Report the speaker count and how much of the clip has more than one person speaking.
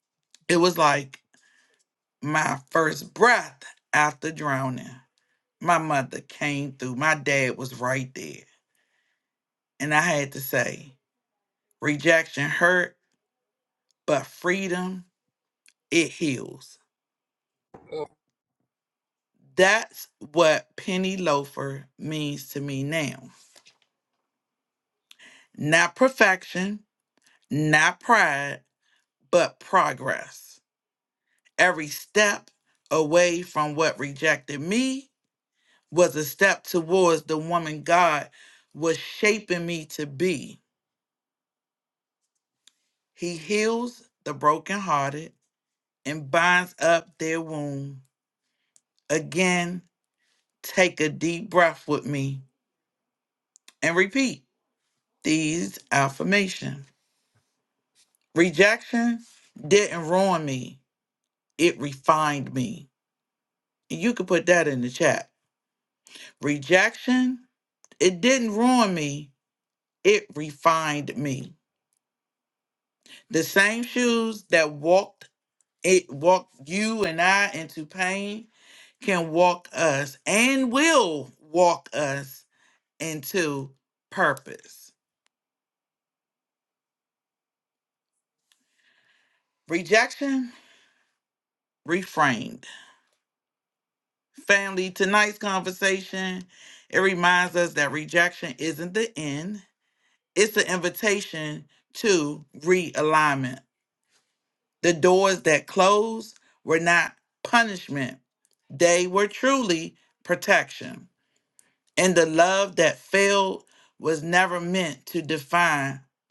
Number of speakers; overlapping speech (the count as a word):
one, no overlap